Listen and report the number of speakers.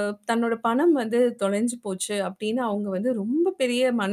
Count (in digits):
1